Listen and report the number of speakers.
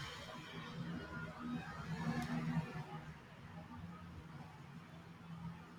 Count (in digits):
0